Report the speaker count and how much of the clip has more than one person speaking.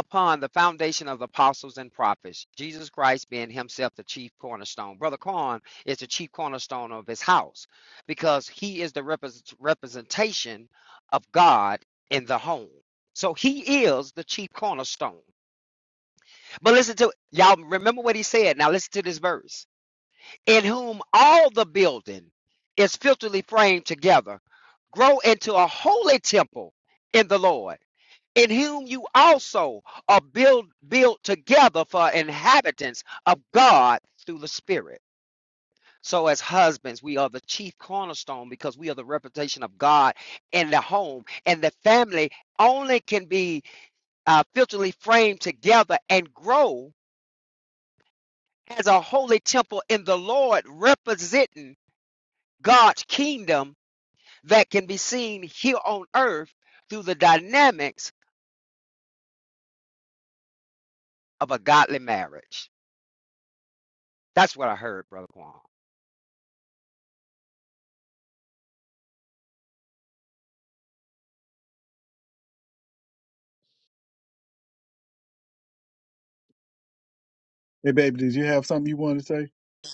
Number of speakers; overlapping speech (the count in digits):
2, no overlap